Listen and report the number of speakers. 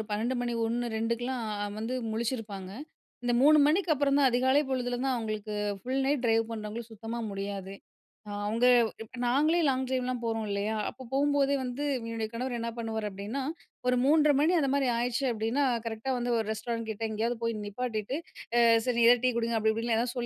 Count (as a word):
one